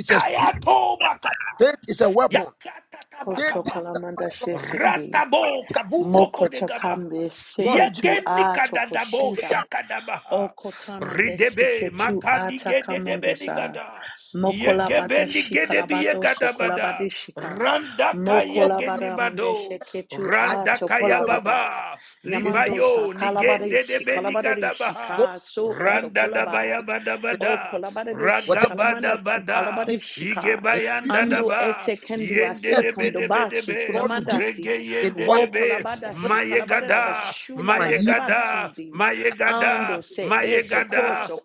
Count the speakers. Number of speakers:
three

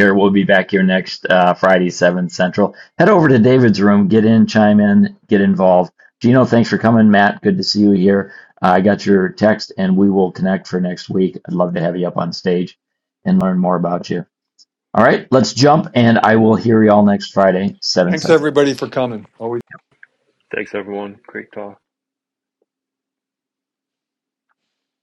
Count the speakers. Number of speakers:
three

